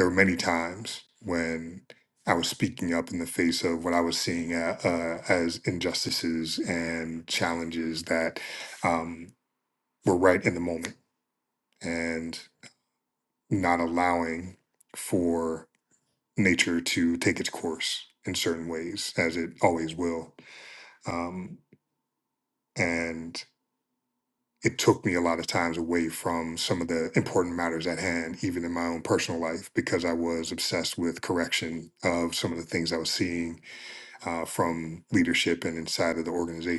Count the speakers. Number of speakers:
1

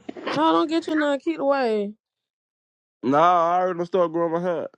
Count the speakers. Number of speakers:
2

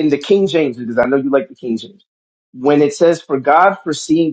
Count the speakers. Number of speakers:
1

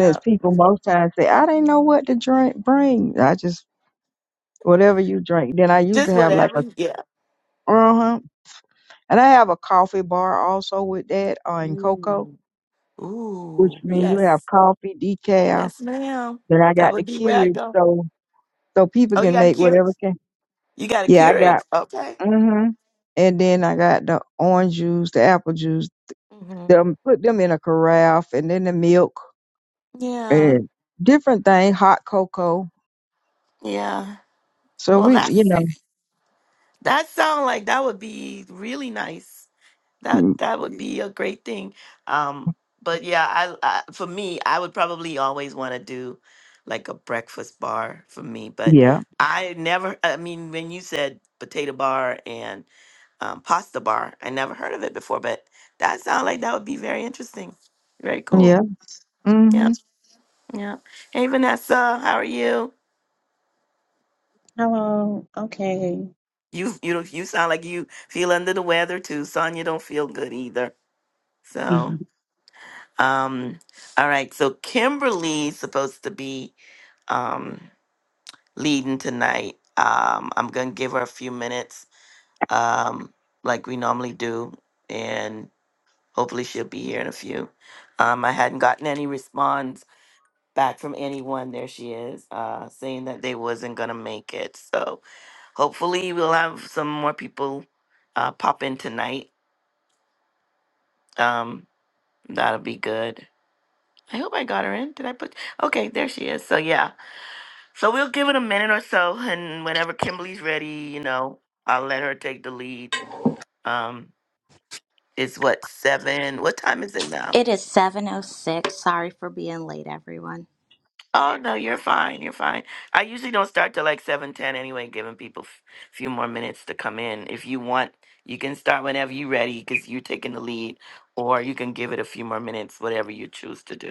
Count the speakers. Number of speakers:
4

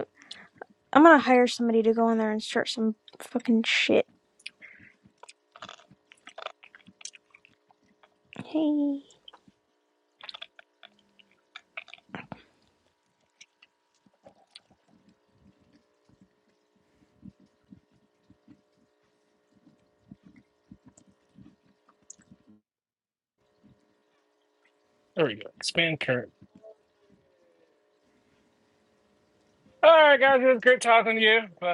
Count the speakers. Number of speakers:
2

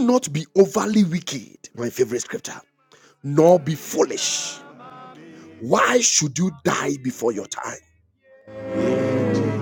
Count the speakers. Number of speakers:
1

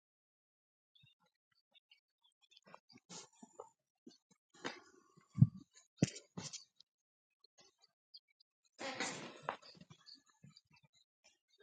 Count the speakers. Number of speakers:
0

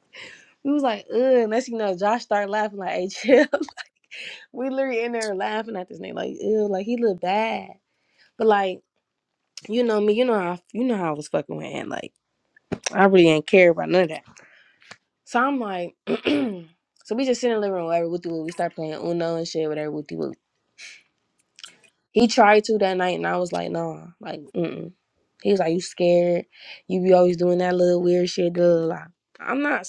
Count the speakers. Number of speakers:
1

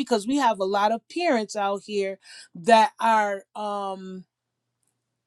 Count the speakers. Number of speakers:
1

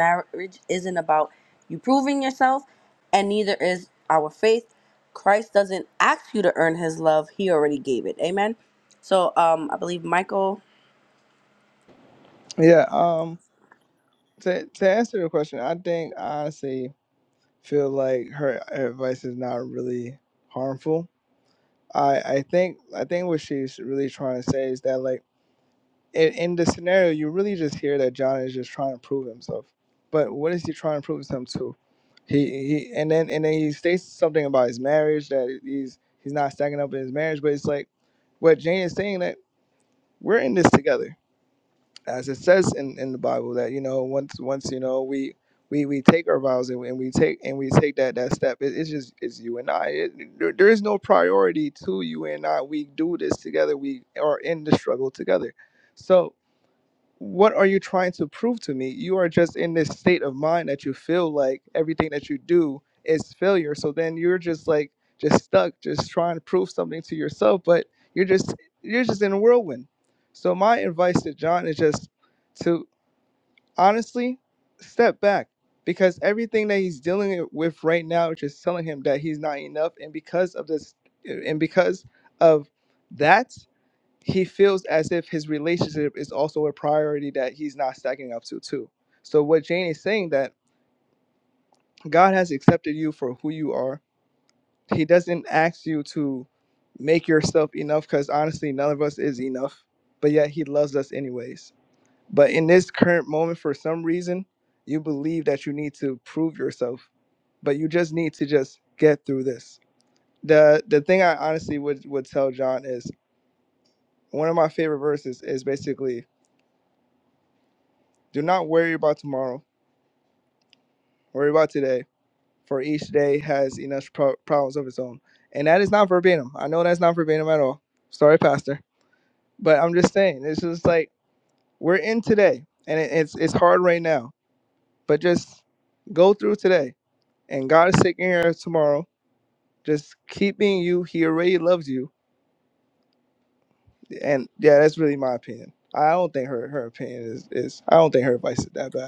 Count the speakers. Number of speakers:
2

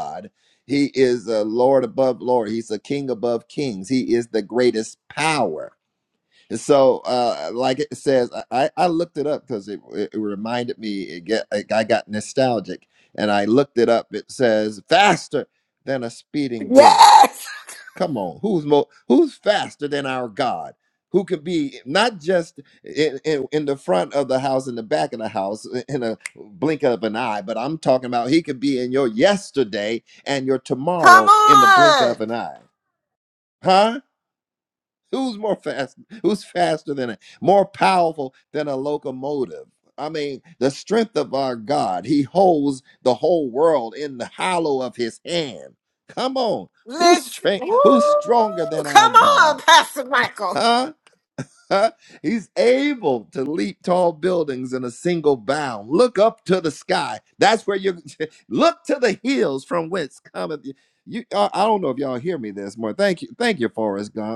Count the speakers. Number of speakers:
2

